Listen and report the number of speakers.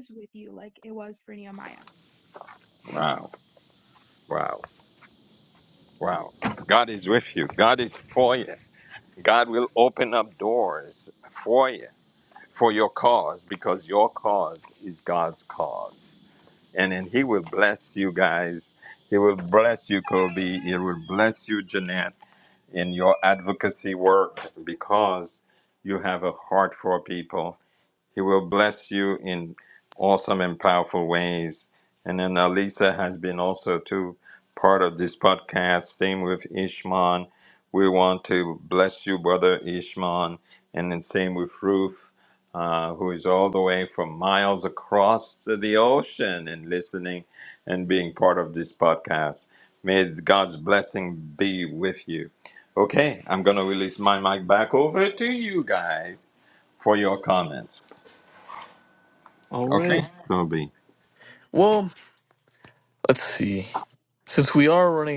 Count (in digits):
3